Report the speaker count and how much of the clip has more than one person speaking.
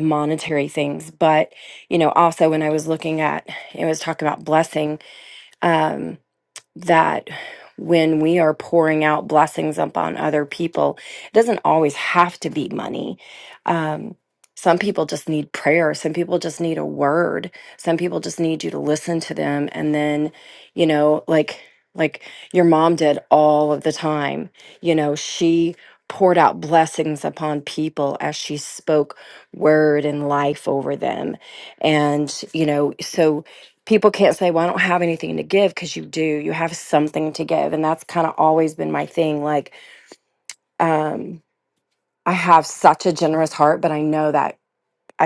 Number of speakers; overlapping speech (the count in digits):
1, no overlap